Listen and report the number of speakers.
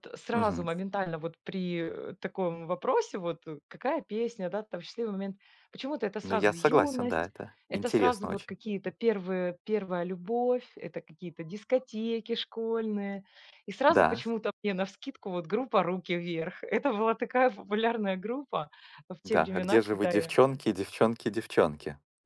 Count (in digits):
2